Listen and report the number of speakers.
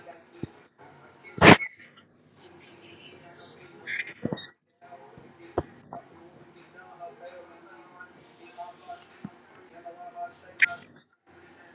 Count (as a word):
zero